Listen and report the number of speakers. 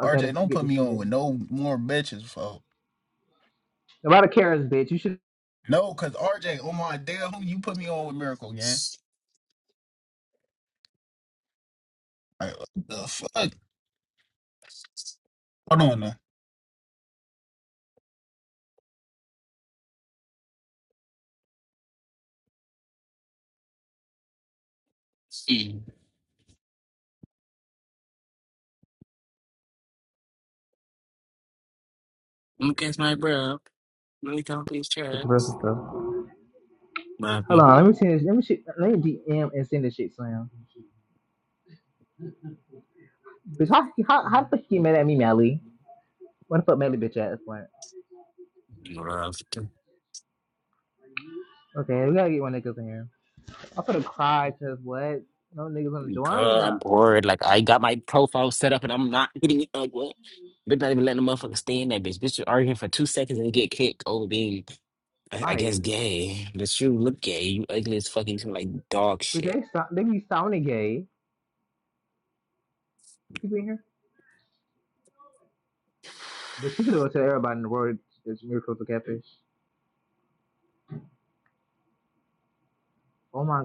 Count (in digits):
3